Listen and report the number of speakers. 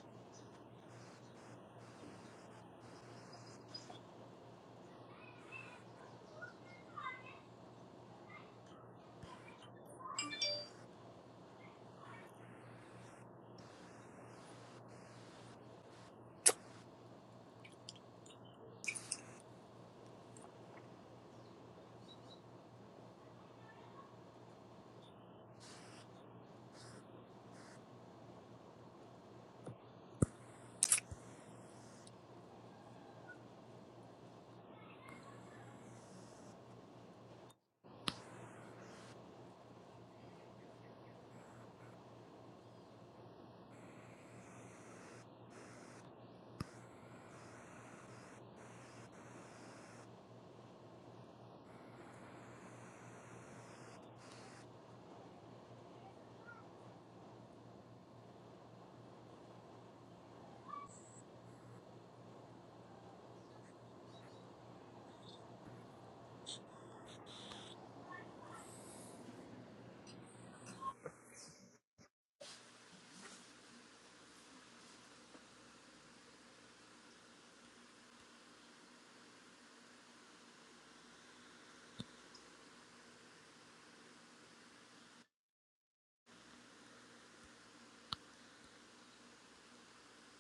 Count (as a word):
zero